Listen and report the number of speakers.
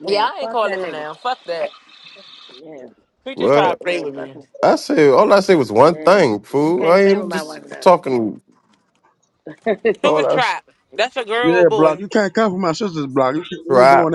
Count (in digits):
4